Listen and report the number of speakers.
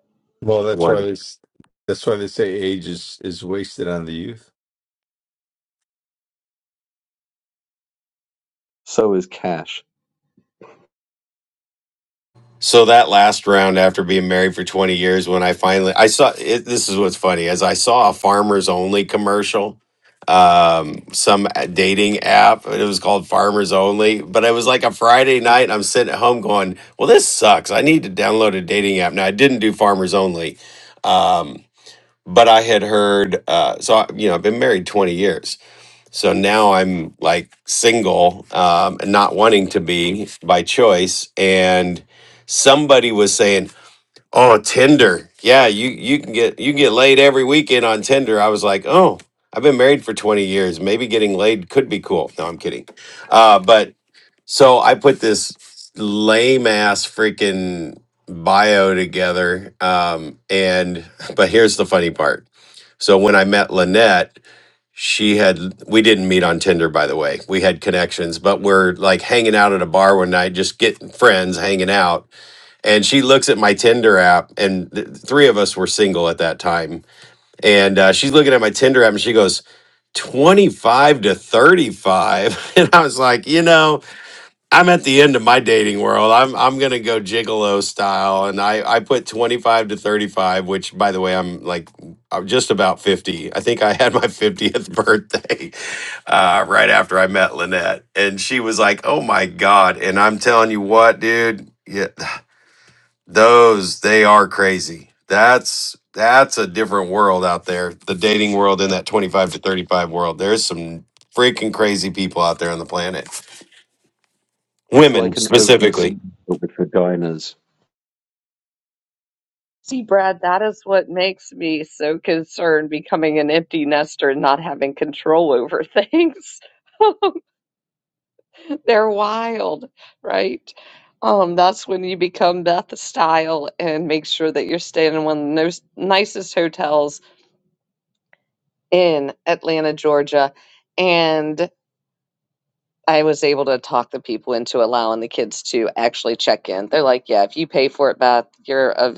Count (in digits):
4